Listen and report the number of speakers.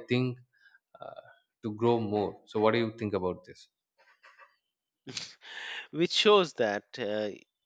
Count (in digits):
2